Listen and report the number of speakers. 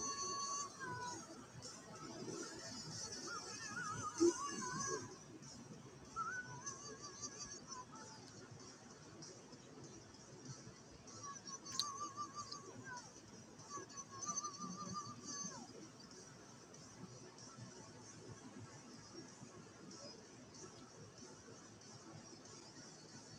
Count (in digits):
0